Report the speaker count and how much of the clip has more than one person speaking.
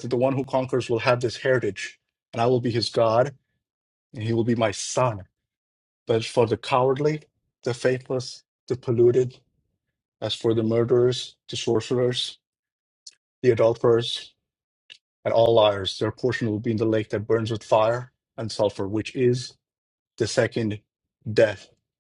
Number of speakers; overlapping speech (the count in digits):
1, no overlap